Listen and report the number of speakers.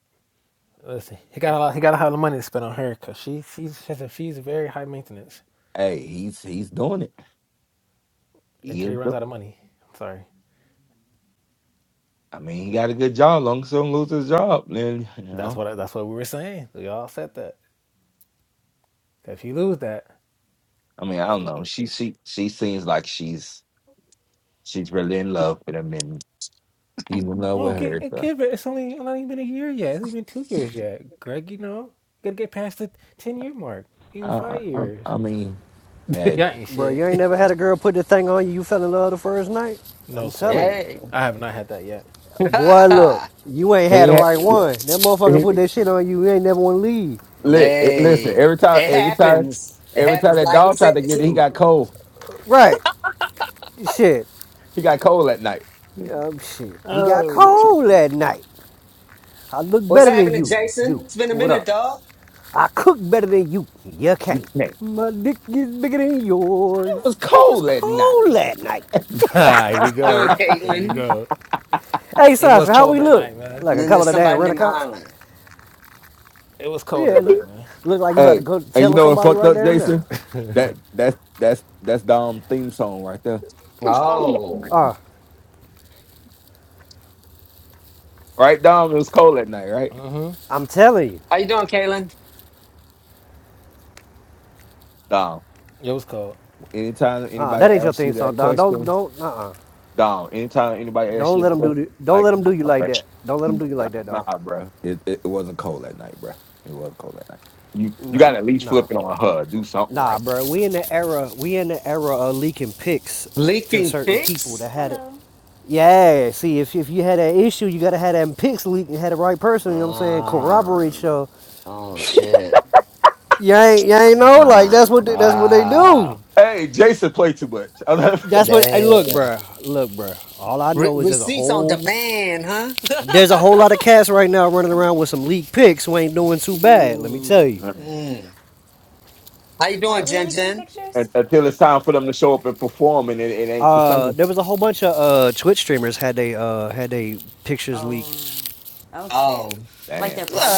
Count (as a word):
five